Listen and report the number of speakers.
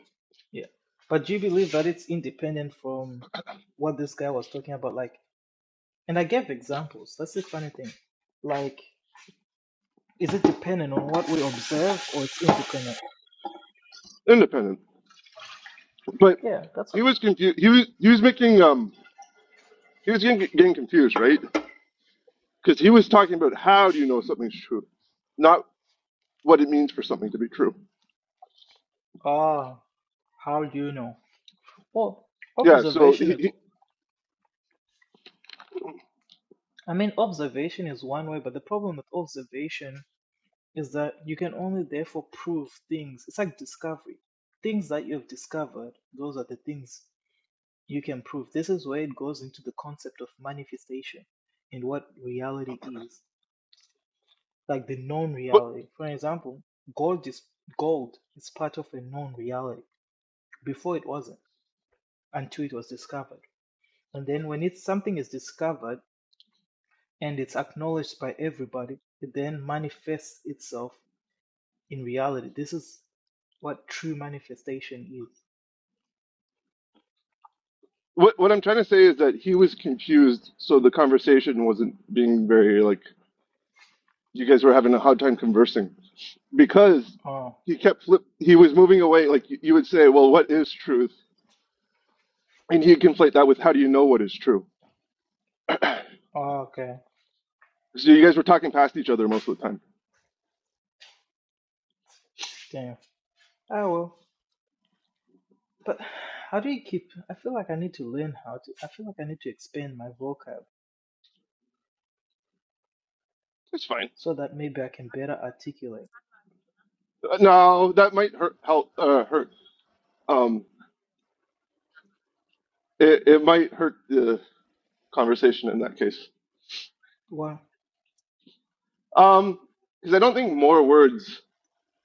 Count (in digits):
2